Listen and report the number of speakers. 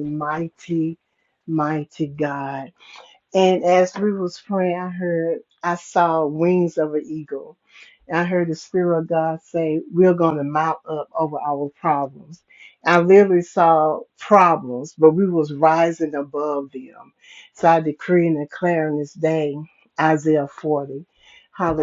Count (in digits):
1